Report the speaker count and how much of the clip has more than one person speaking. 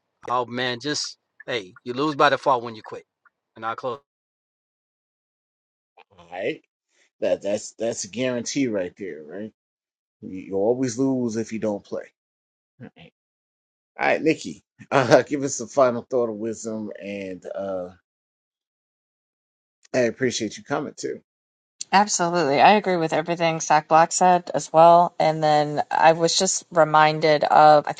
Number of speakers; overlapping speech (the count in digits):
3, no overlap